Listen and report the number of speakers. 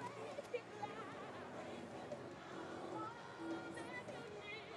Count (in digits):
0